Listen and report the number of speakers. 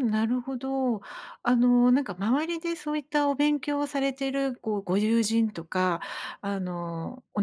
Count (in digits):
1